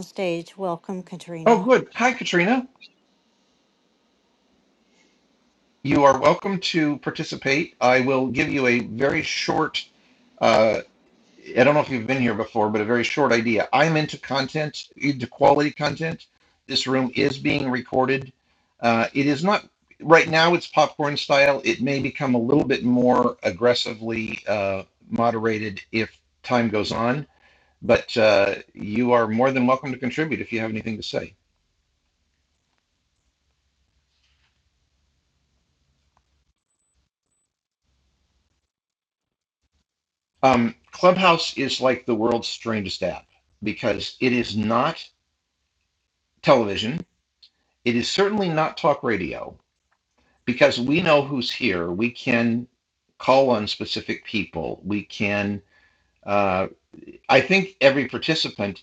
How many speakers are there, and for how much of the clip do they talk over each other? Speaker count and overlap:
two, under 1%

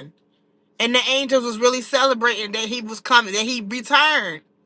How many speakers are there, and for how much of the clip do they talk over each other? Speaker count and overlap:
one, no overlap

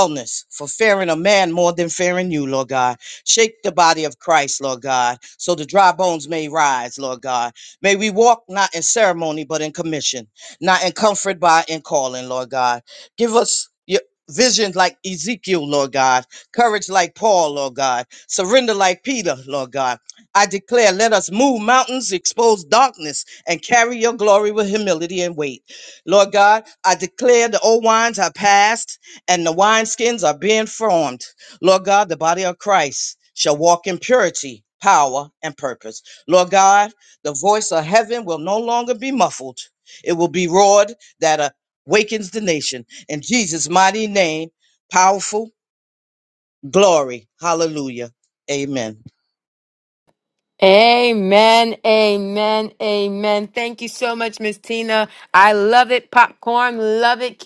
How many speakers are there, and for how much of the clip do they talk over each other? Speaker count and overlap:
two, no overlap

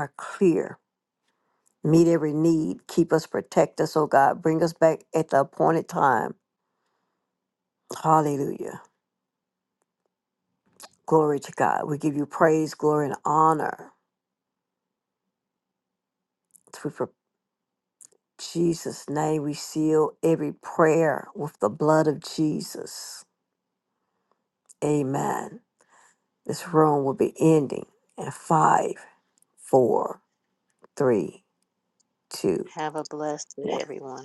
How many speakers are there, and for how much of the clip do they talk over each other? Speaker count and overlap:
two, about 1%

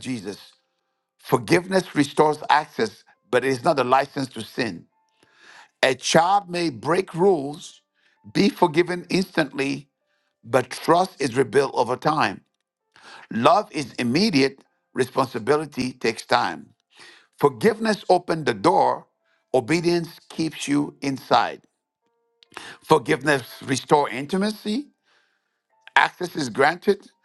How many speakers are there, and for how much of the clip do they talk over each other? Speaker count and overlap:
one, no overlap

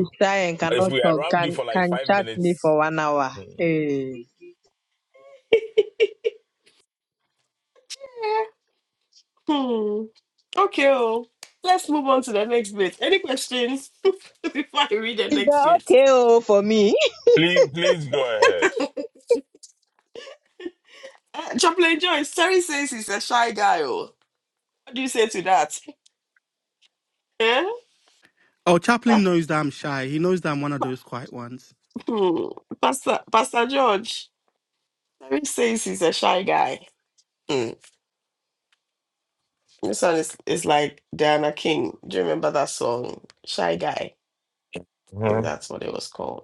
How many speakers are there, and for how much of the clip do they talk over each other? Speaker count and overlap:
four, about 7%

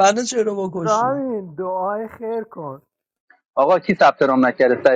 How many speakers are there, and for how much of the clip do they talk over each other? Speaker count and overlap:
three, about 7%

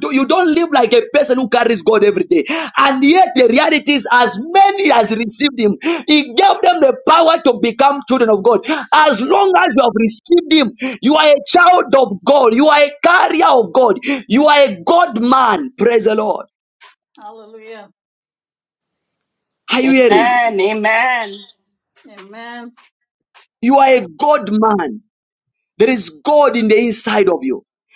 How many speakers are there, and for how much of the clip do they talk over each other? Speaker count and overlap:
three, about 3%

